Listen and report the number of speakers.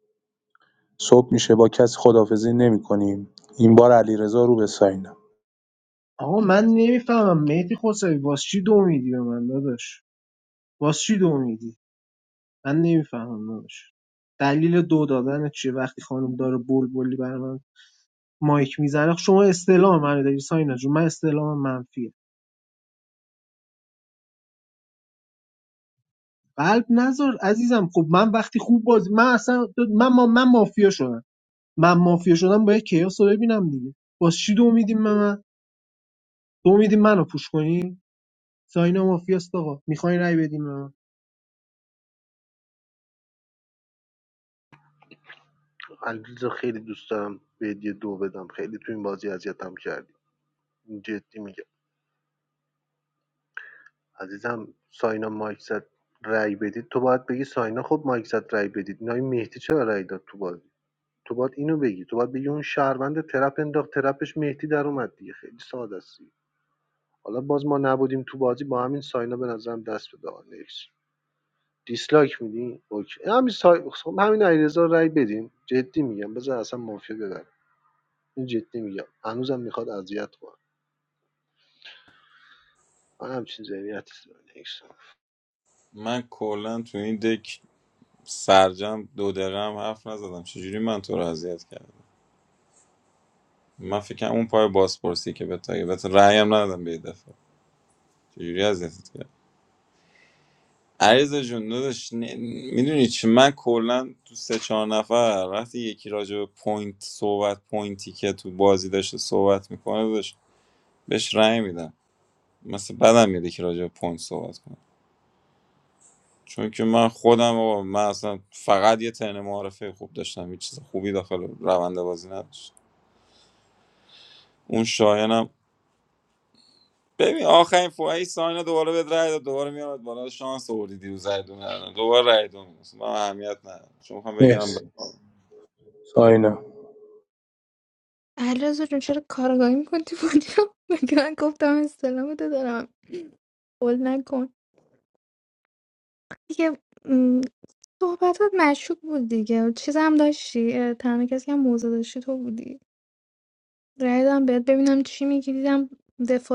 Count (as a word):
five